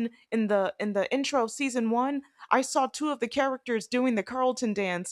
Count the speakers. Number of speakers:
1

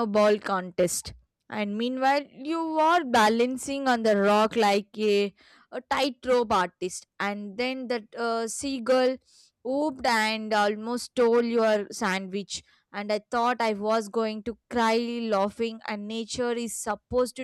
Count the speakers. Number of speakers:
1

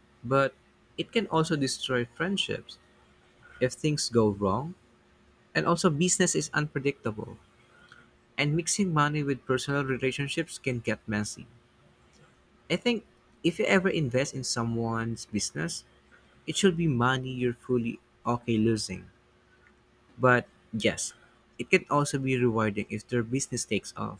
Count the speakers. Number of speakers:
1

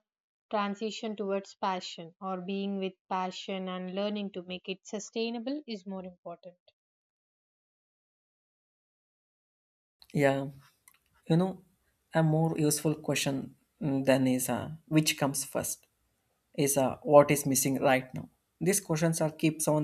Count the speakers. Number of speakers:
2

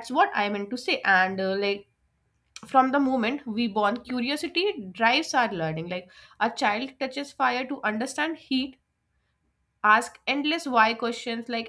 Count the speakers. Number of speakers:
1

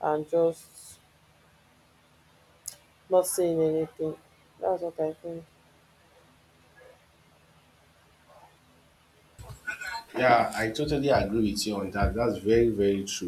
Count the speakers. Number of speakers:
2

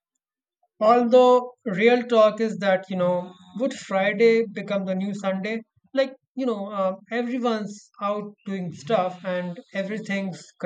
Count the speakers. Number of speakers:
1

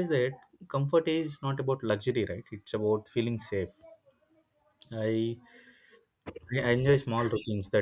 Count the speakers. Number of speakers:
1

